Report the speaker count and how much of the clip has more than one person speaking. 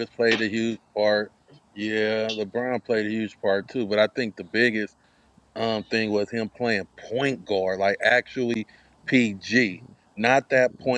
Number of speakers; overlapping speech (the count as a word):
one, no overlap